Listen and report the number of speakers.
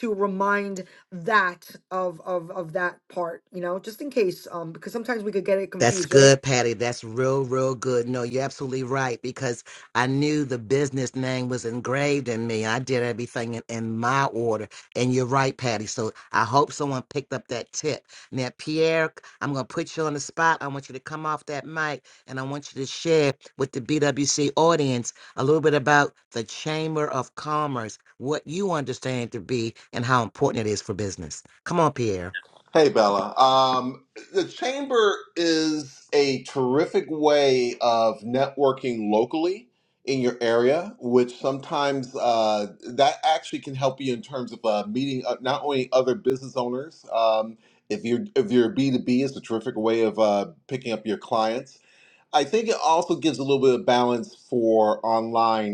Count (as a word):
three